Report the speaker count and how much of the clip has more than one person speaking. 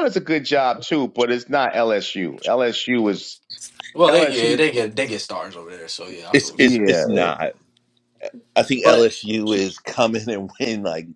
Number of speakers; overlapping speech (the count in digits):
3, about 13%